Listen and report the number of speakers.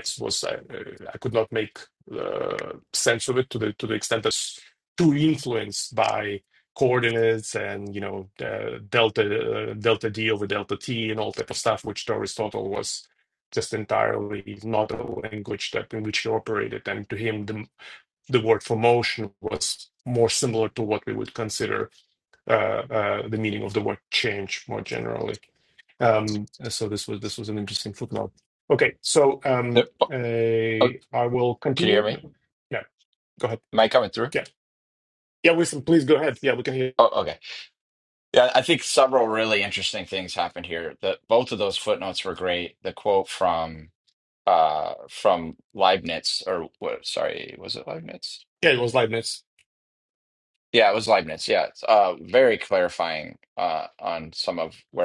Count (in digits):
2